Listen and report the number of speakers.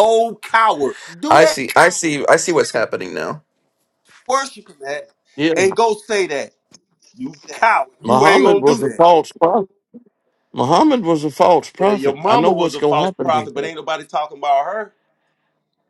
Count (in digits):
3